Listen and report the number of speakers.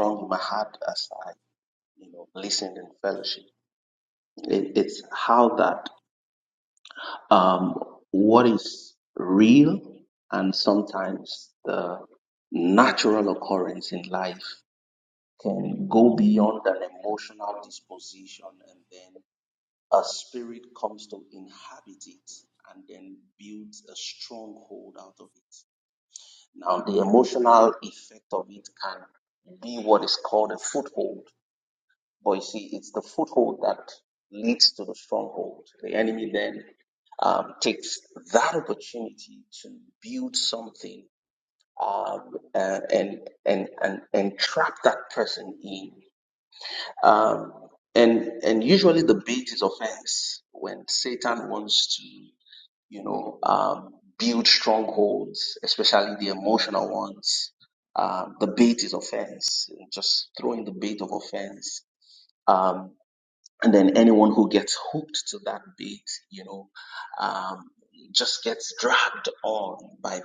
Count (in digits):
1